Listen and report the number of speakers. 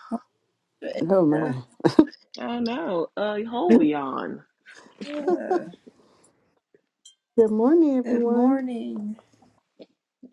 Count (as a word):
three